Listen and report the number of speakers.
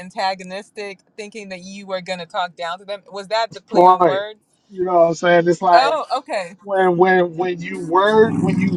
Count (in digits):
2